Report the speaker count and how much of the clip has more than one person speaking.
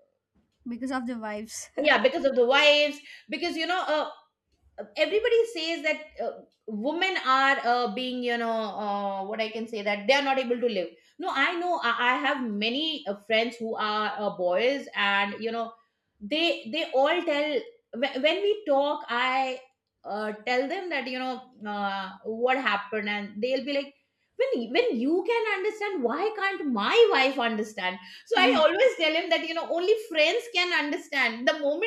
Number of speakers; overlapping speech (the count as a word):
two, about 1%